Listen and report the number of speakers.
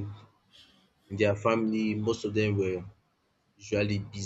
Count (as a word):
one